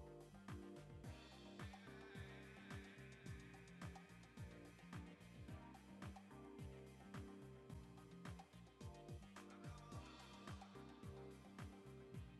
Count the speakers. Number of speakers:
0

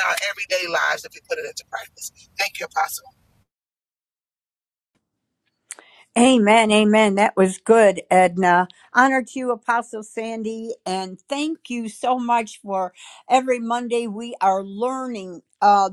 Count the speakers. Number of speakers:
2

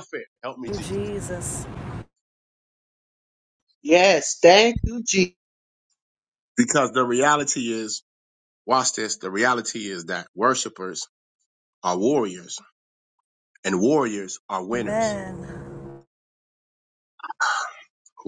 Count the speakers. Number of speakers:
3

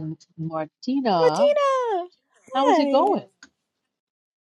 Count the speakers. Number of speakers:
2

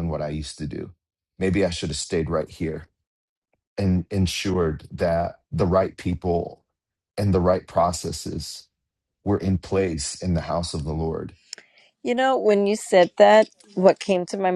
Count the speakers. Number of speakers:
2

